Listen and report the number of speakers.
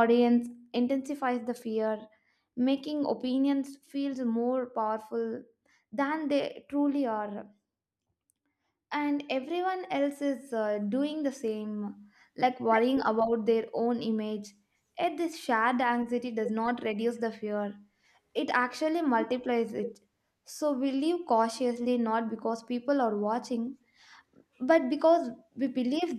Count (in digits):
1